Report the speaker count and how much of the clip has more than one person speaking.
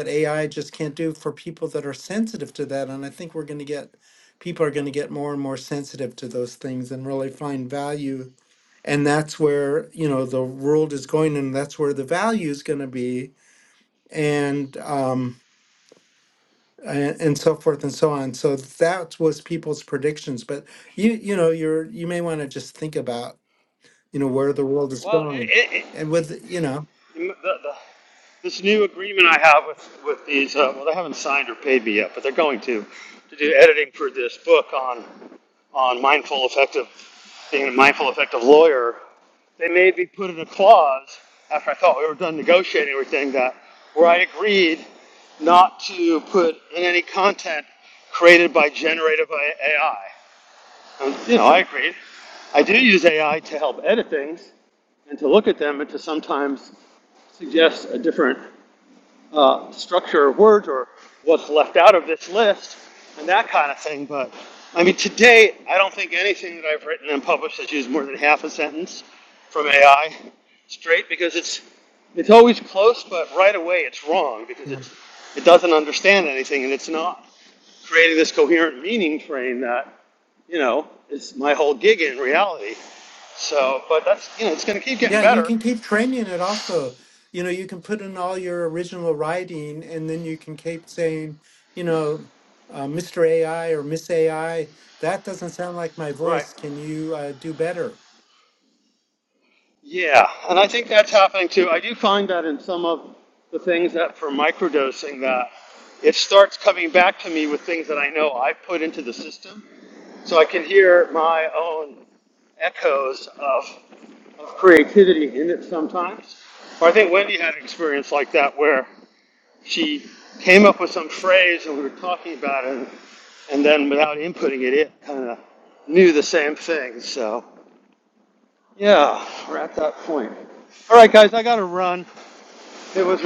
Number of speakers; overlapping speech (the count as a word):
two, about 1%